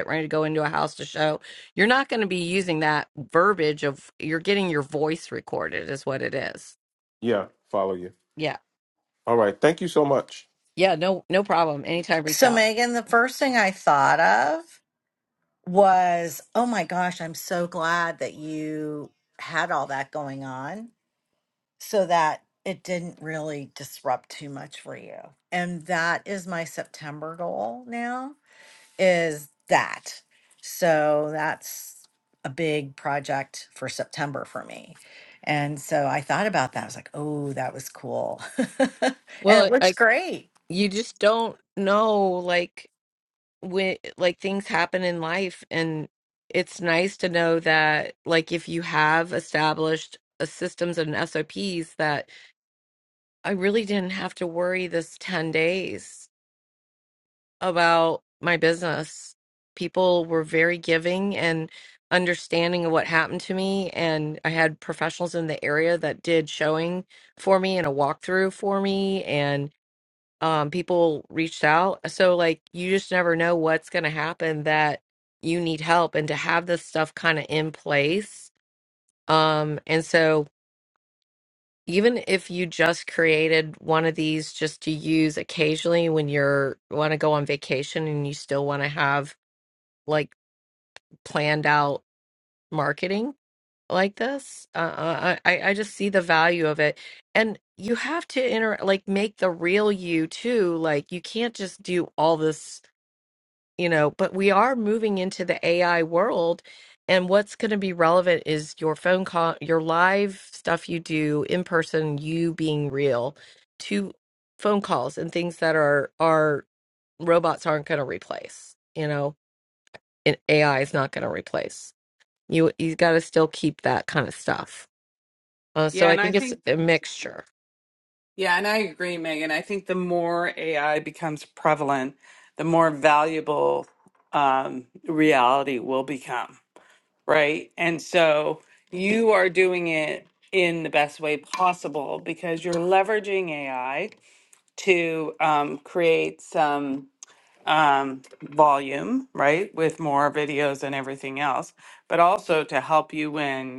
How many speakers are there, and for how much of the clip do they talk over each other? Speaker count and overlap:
4, about 1%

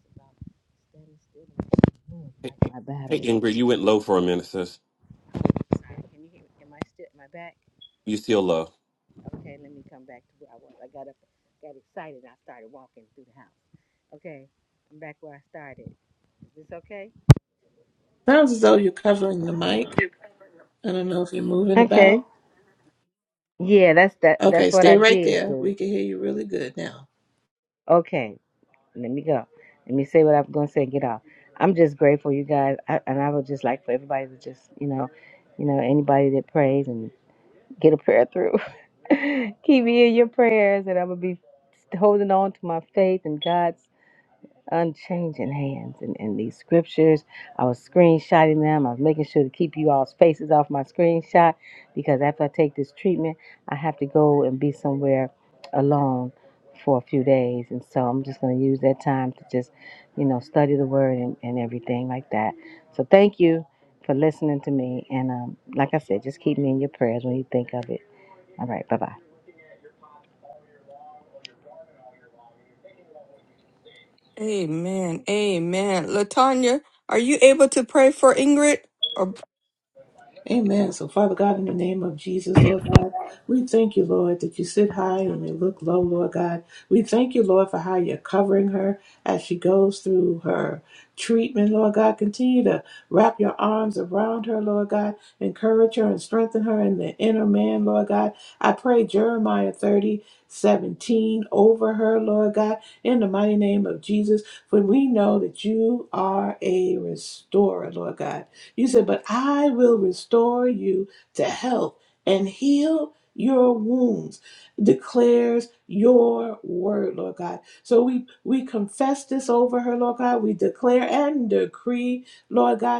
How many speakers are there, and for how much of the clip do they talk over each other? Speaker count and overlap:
4, about 2%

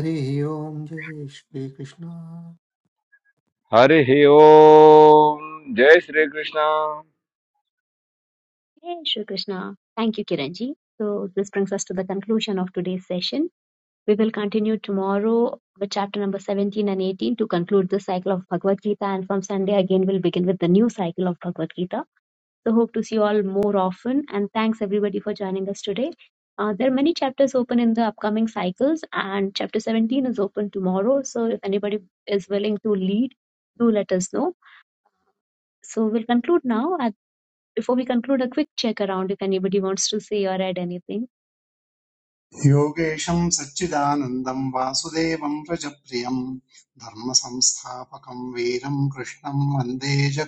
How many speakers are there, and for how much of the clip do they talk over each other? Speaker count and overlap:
4, no overlap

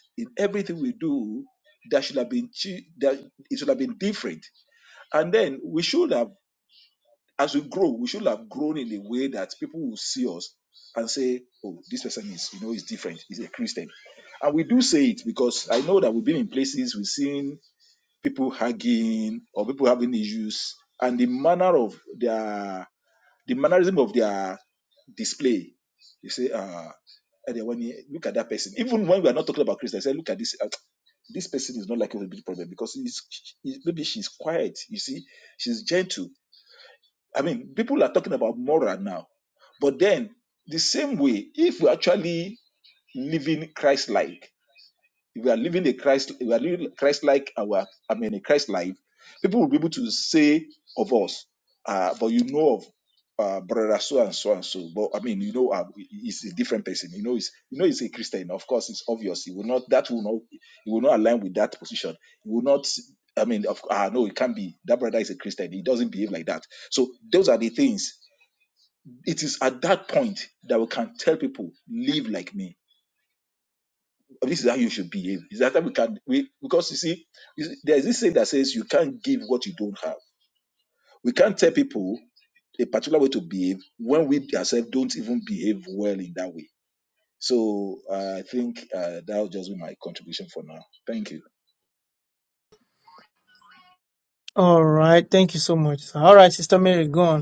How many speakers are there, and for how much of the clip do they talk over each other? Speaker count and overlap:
2, no overlap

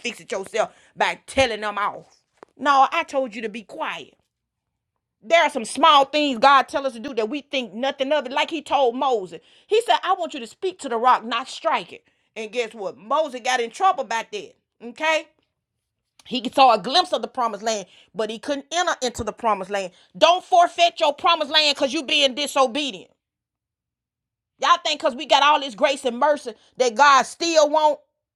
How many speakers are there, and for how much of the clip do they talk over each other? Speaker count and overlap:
1, no overlap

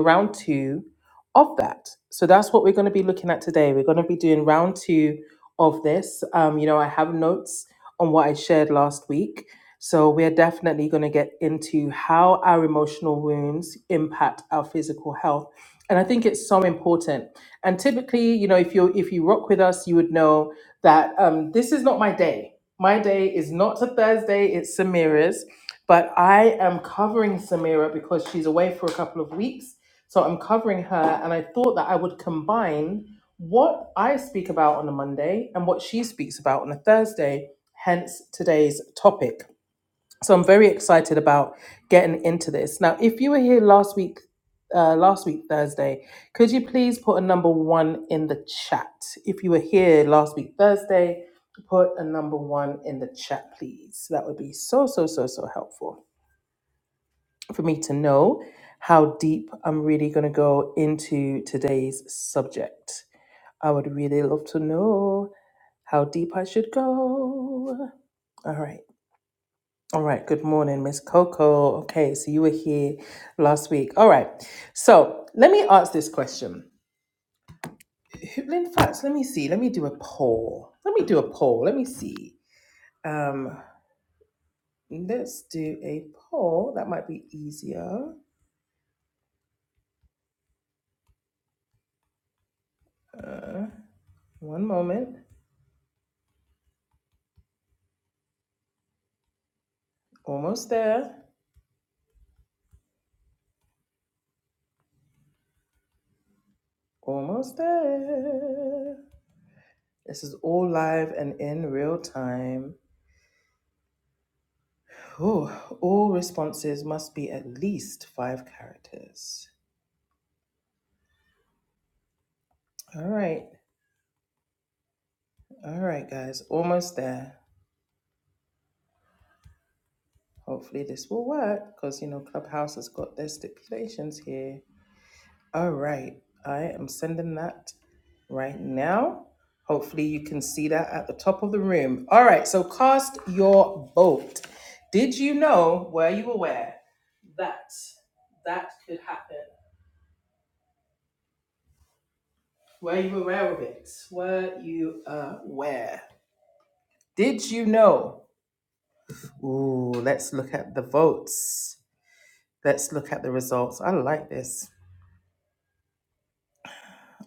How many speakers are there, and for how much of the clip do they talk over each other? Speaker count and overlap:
1, no overlap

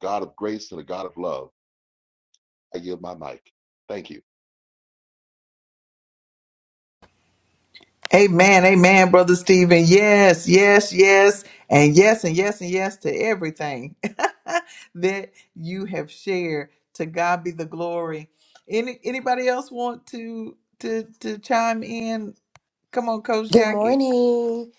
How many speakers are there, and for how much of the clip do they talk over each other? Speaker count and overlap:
3, about 2%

